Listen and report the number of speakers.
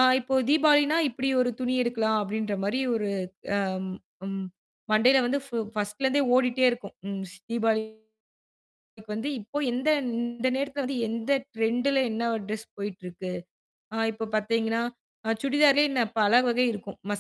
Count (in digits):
1